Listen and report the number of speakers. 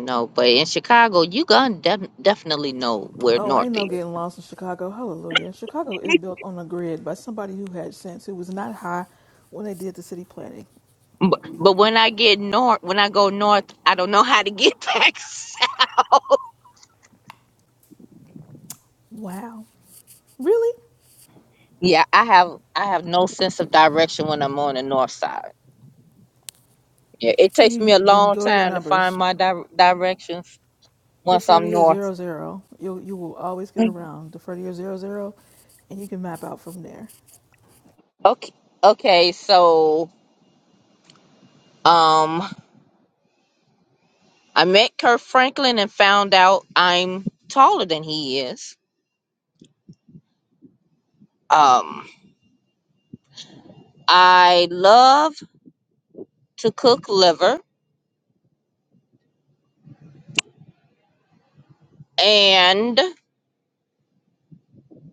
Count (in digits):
2